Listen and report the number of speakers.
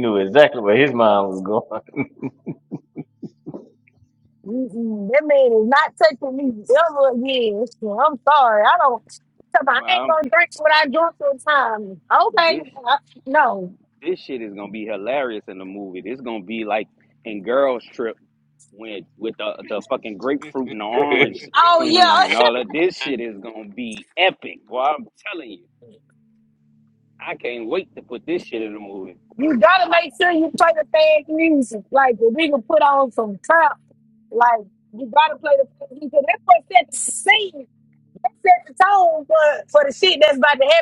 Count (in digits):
3